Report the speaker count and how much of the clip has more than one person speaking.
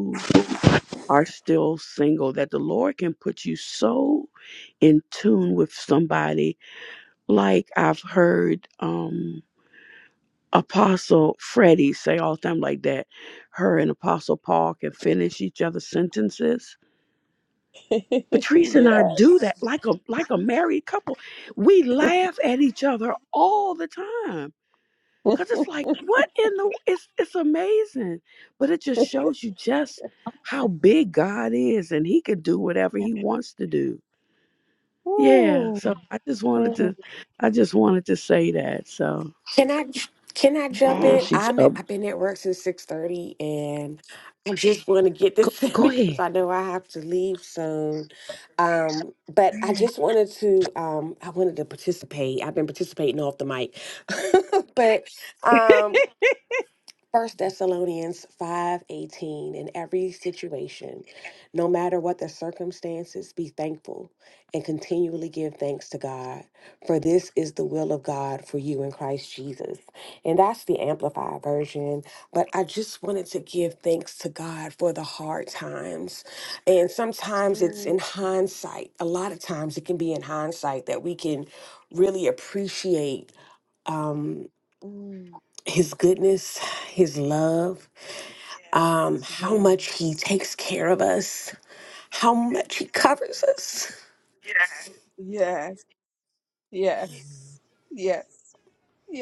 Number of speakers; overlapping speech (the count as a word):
three, about 4%